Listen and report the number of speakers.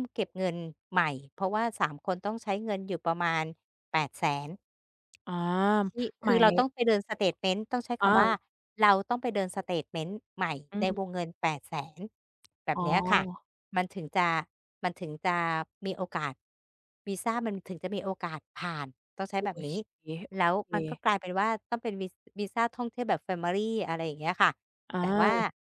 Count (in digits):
2